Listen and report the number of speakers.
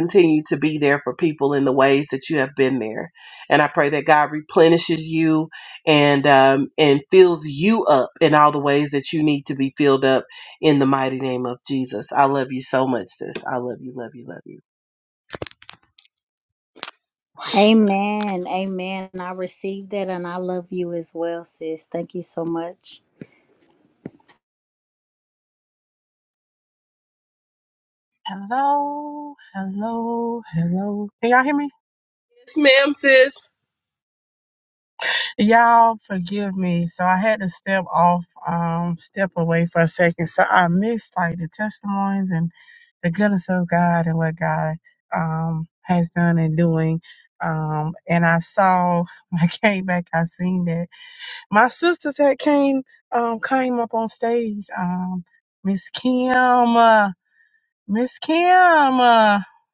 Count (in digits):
3